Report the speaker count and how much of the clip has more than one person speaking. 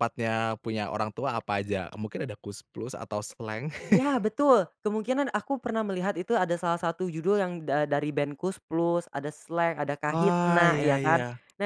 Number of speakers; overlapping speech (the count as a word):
two, about 10%